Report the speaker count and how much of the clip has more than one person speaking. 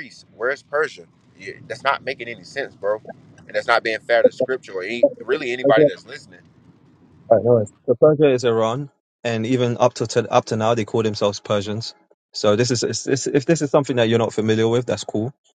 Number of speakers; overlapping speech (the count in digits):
2, about 2%